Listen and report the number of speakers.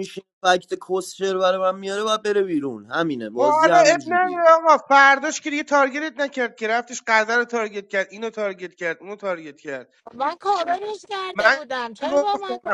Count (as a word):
three